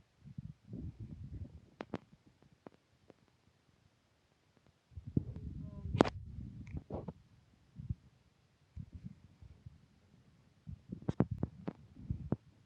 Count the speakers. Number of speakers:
zero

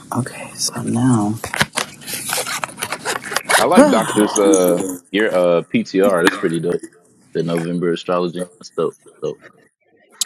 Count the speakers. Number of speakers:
two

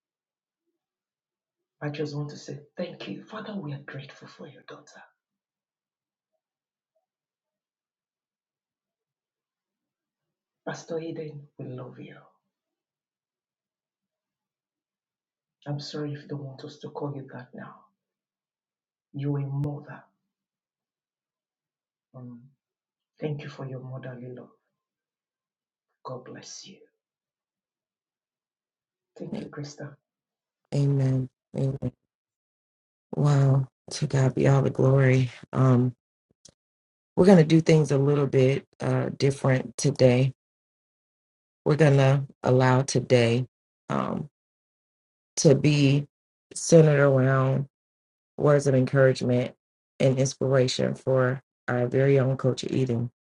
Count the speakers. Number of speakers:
two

